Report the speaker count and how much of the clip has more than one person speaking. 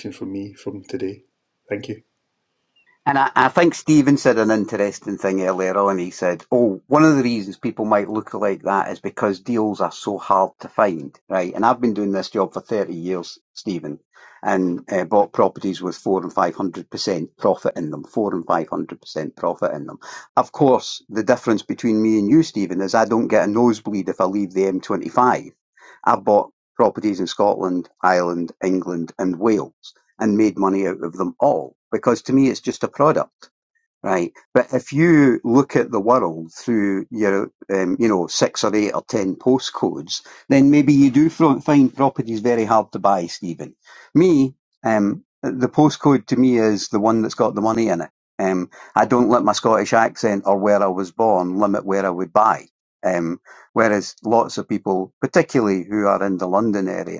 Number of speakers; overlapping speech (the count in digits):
2, no overlap